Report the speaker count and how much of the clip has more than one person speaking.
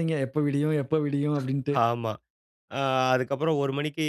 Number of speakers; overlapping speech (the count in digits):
2, no overlap